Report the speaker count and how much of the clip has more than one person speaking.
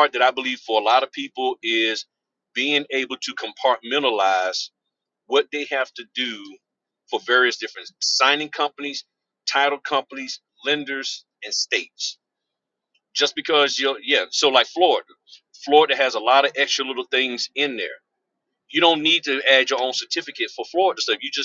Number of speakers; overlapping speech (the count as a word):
one, no overlap